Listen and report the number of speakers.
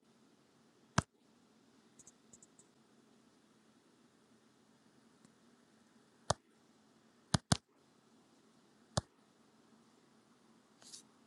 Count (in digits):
0